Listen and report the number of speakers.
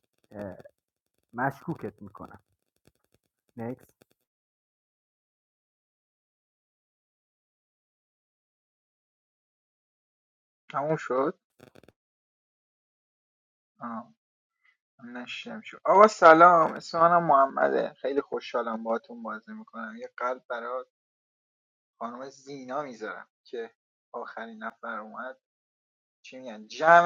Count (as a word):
two